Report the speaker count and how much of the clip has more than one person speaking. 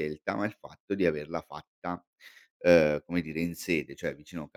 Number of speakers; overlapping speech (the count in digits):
1, no overlap